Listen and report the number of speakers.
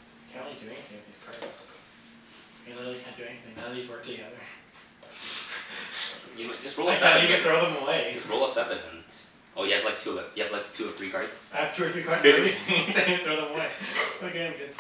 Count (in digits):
2